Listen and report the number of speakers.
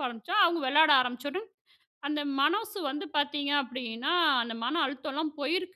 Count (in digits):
1